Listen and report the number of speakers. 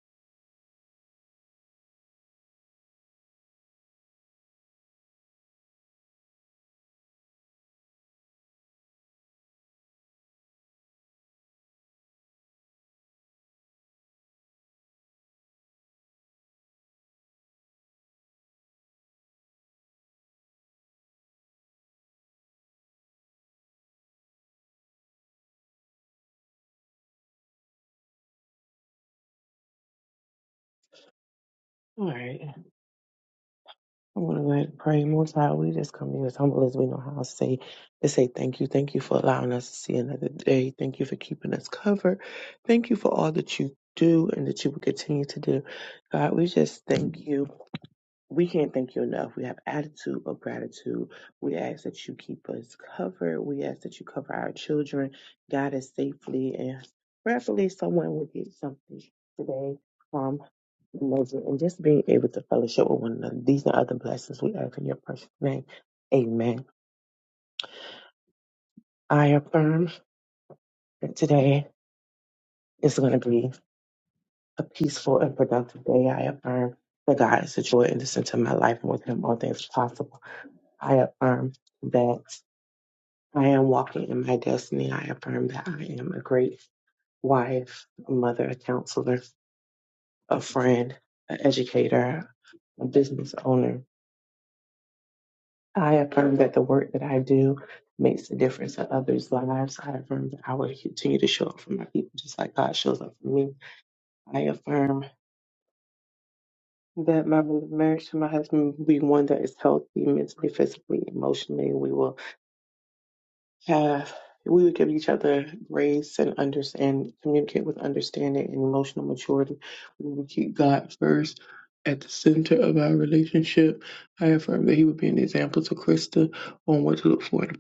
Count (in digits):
1